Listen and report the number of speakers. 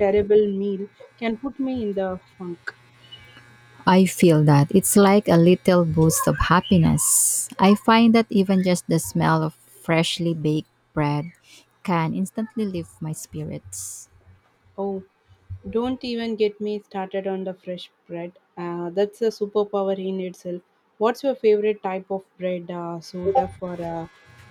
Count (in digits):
2